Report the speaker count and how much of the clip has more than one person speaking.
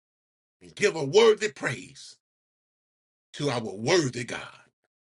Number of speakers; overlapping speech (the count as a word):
one, no overlap